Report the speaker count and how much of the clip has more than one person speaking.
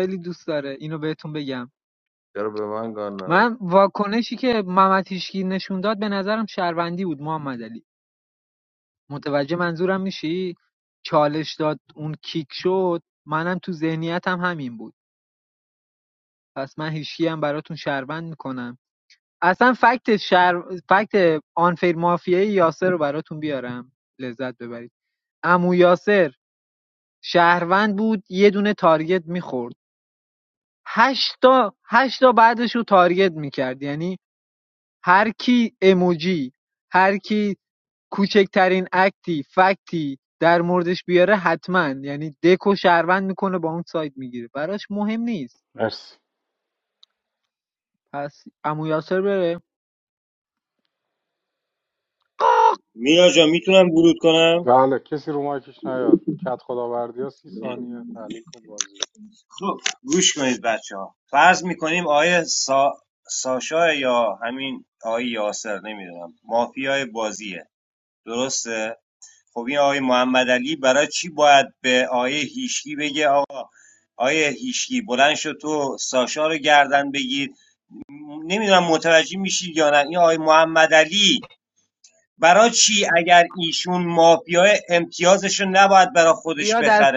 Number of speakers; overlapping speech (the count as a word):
four, about 1%